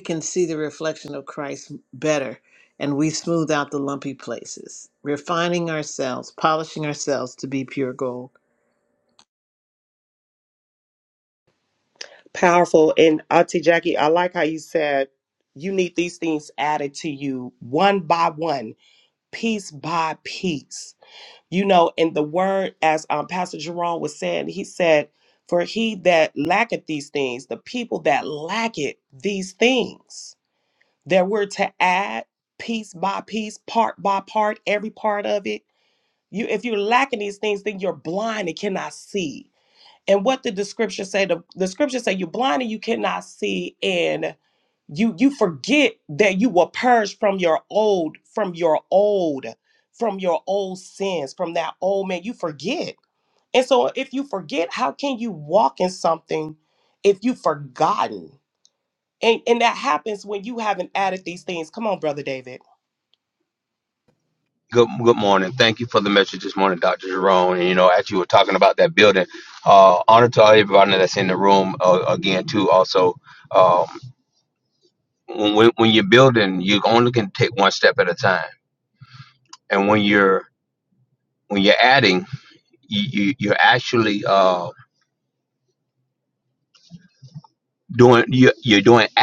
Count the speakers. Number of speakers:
three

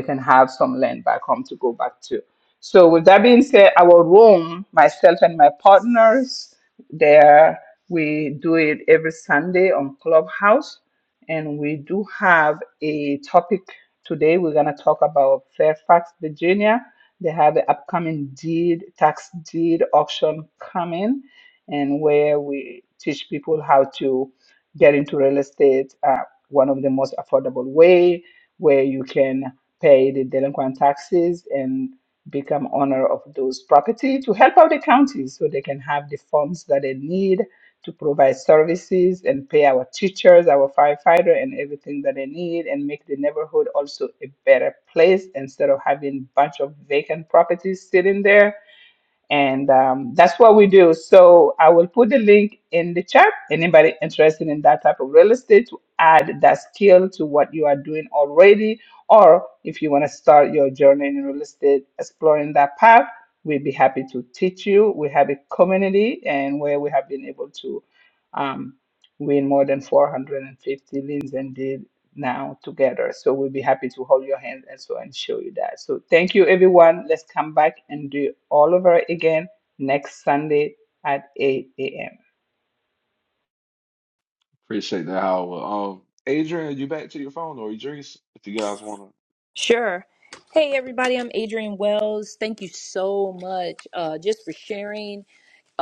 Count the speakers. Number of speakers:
three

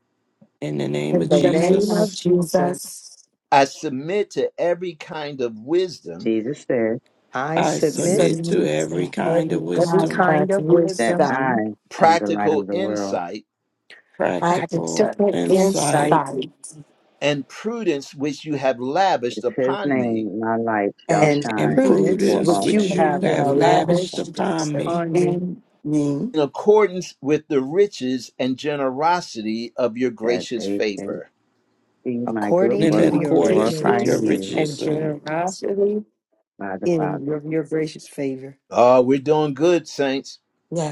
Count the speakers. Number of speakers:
five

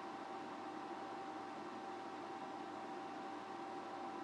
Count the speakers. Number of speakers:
zero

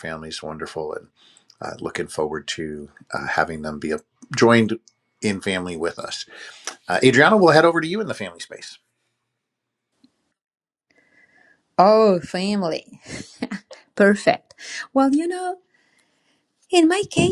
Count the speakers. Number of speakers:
two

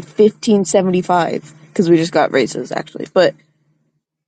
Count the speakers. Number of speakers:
one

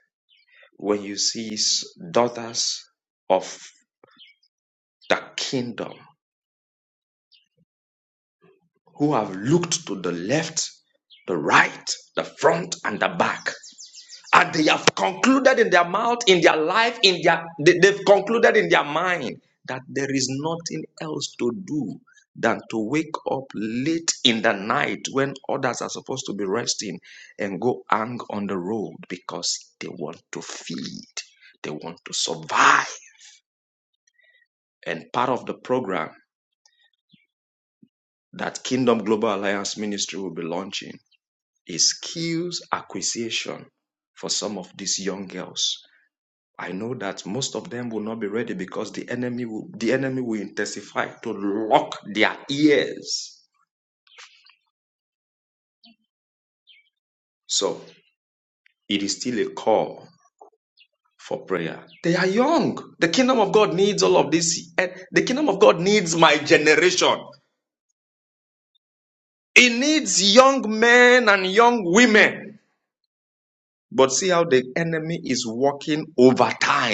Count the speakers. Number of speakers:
one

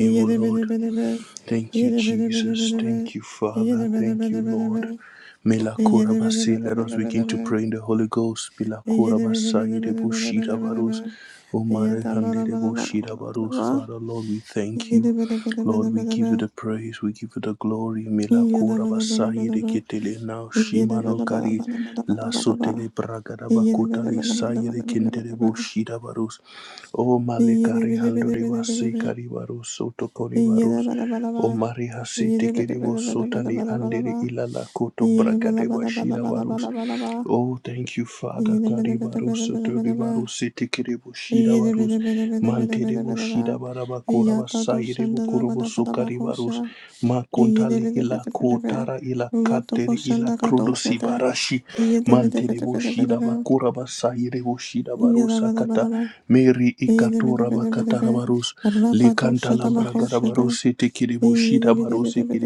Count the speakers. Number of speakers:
two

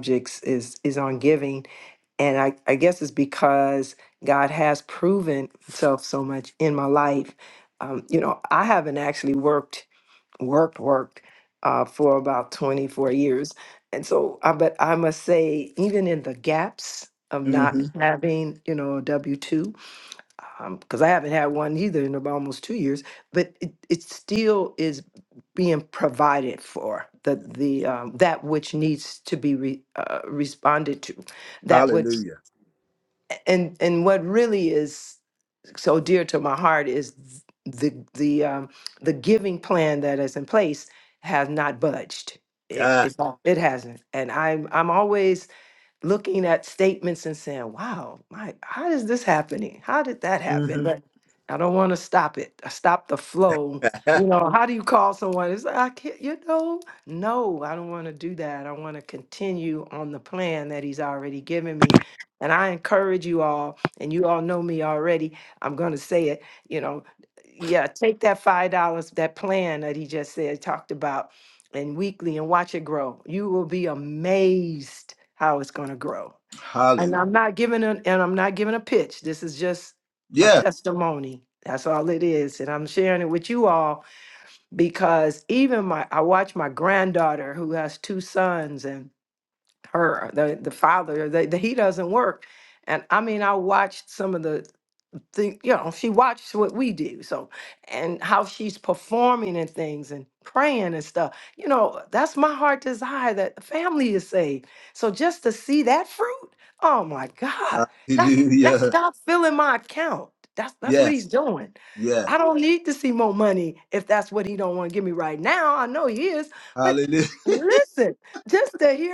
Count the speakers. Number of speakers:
two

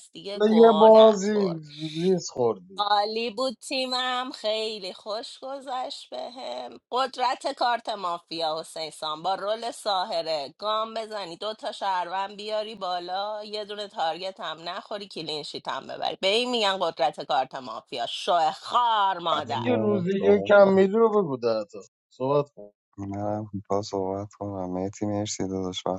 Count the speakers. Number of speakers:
three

